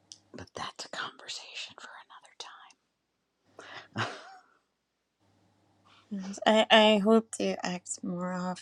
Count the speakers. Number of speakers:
2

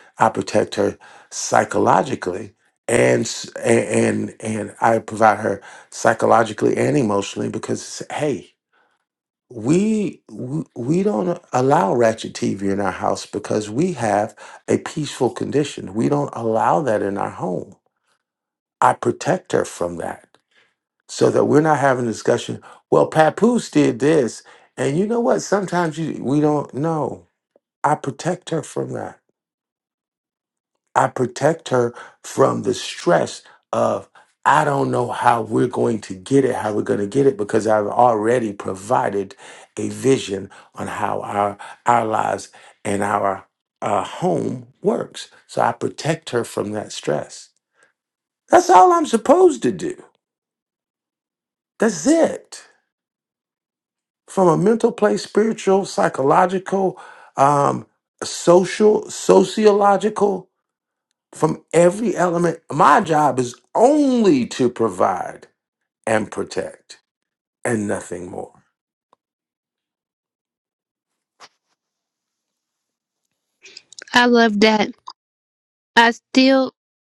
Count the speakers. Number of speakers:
2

